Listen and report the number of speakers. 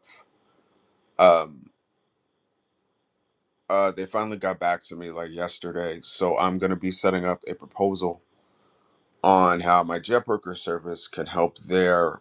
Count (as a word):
one